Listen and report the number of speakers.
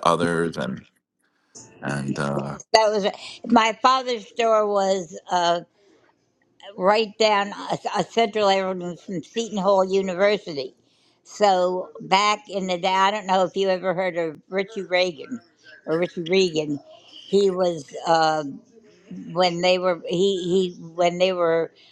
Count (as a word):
two